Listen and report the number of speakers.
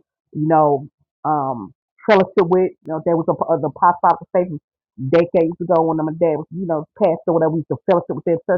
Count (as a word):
one